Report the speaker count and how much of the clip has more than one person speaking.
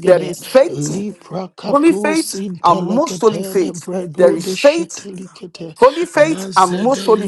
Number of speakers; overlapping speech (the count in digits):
2, about 52%